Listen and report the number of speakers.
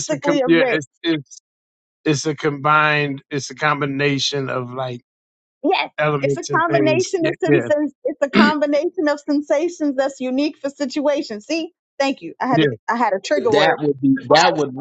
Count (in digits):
3